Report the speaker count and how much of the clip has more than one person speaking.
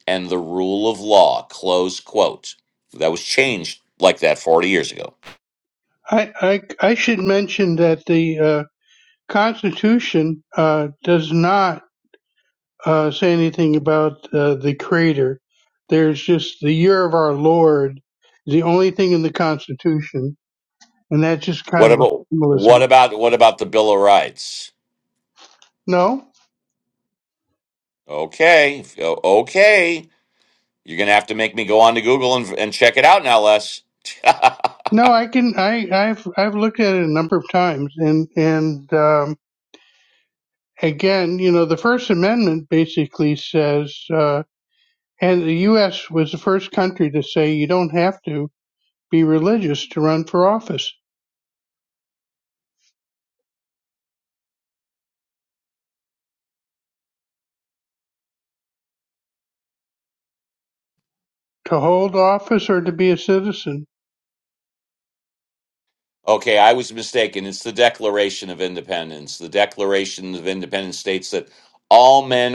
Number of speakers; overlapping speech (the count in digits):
2, about 1%